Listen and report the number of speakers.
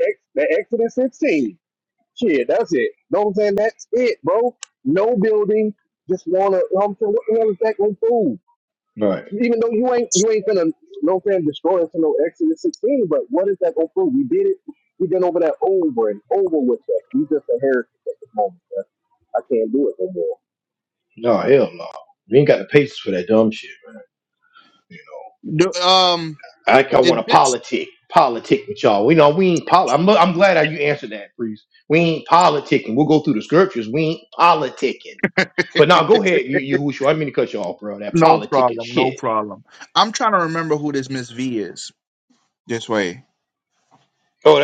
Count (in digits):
3